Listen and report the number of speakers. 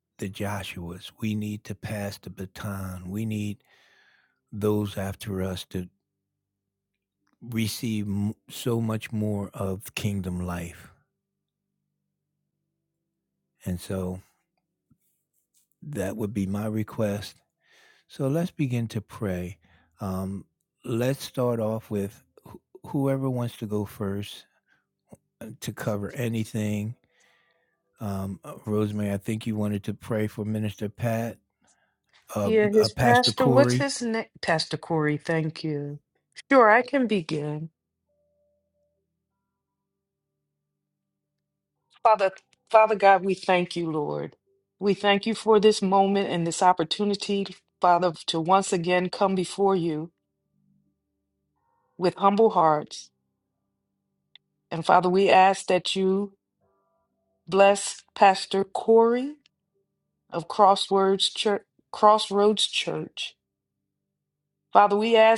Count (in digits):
2